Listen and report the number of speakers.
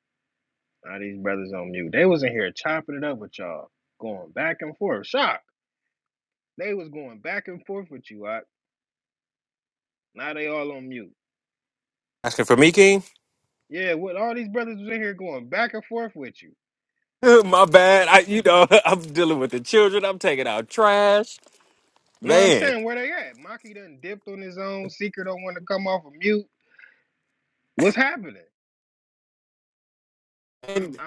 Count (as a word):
two